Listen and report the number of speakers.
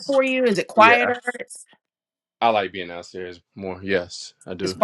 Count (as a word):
two